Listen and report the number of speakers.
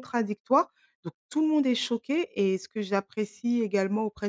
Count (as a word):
one